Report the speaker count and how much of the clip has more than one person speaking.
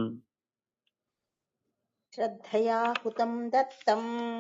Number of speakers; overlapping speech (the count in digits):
1, no overlap